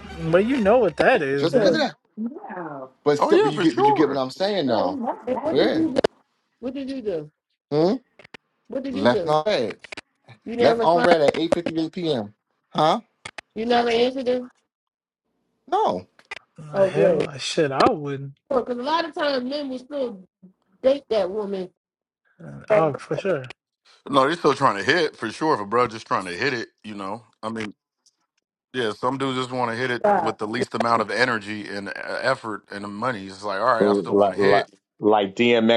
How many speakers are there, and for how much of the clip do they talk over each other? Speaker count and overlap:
6, about 14%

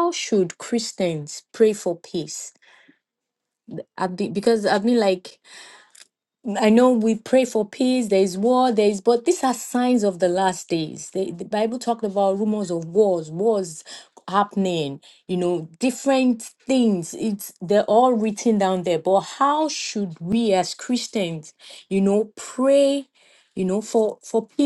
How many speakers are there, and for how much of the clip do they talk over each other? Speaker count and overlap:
1, no overlap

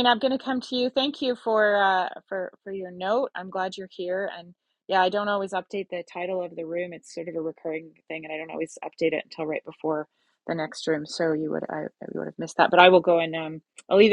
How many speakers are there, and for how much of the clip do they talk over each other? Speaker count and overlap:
1, no overlap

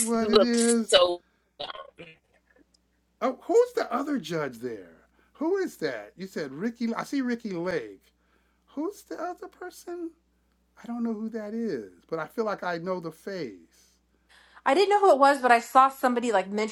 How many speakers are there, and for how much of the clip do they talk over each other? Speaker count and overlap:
3, about 5%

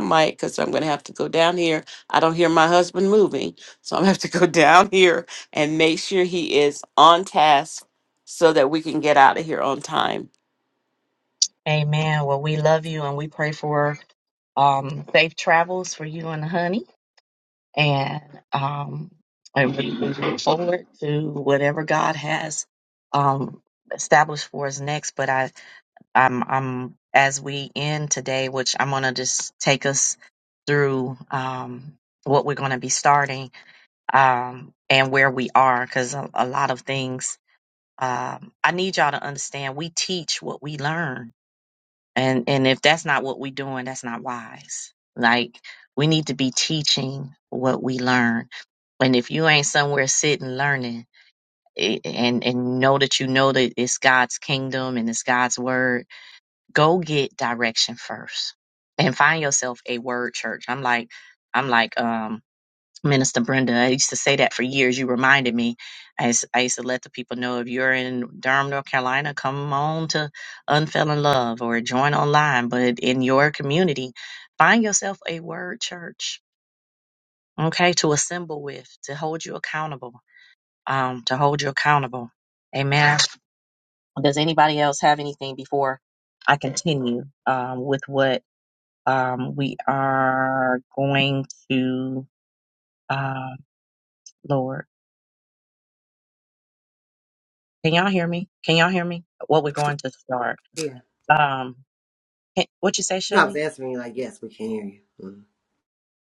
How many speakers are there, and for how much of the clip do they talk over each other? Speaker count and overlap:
3, under 1%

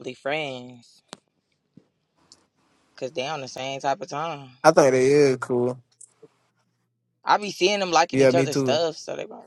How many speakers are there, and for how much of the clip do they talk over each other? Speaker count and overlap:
2, about 7%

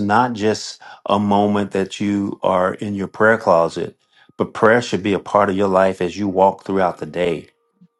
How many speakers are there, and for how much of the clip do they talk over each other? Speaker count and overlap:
1, no overlap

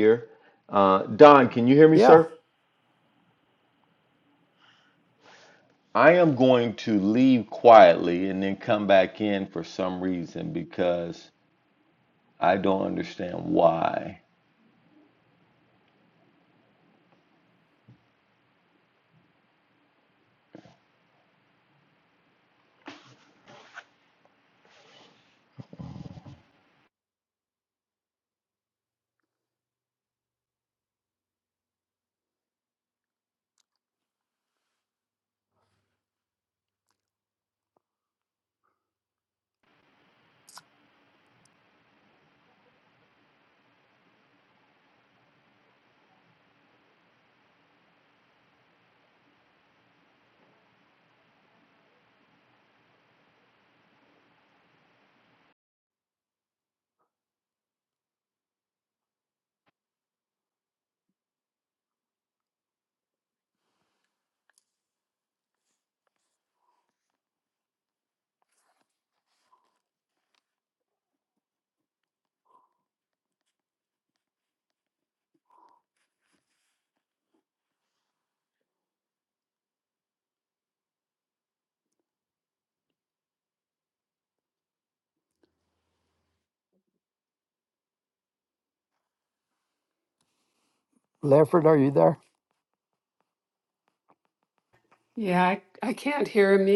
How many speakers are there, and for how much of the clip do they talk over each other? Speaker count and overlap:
3, under 1%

